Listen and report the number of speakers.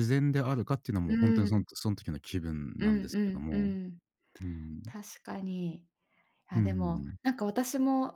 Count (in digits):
2